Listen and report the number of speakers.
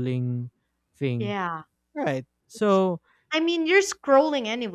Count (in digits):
2